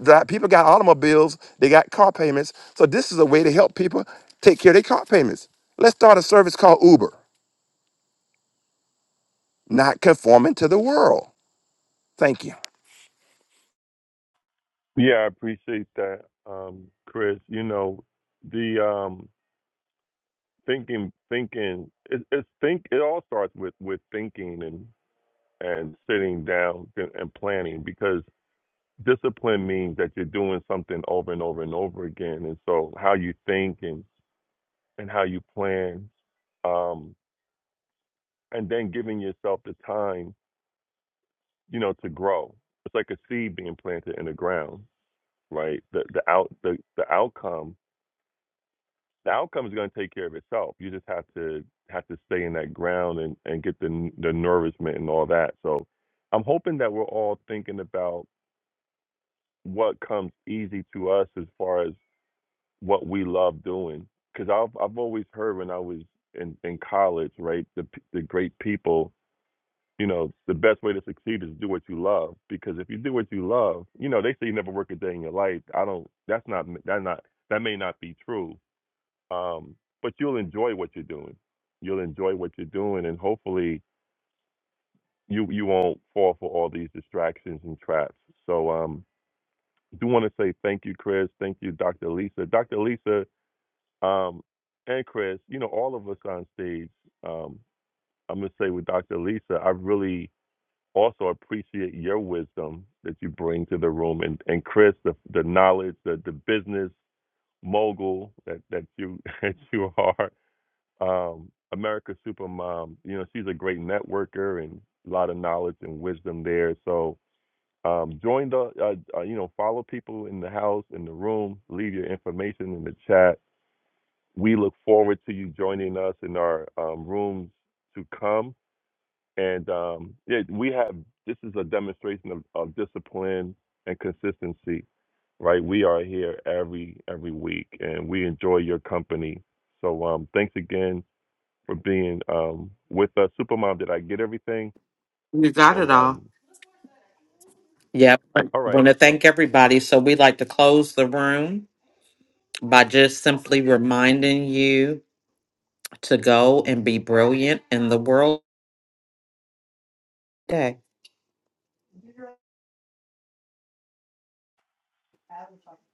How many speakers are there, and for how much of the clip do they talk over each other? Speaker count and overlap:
3, about 1%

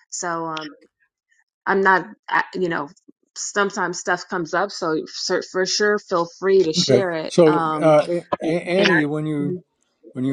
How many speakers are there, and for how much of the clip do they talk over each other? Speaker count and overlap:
2, about 14%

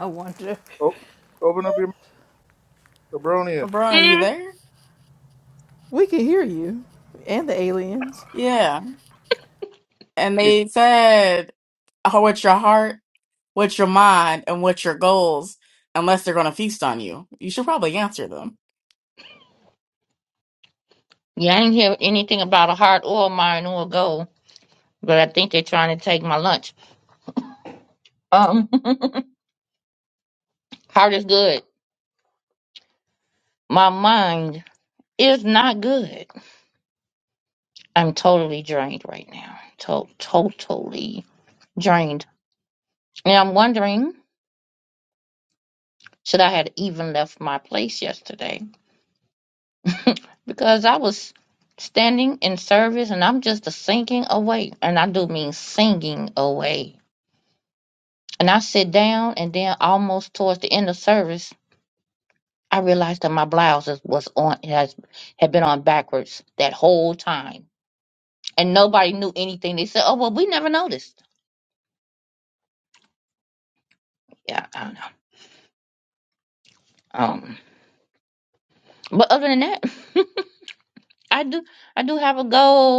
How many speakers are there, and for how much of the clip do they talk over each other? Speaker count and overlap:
4, about 1%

